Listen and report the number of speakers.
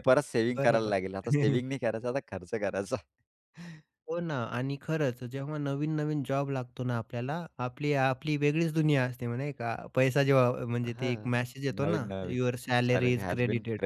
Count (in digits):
2